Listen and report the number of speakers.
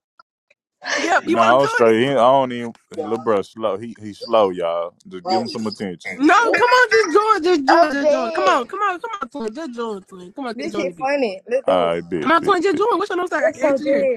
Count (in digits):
3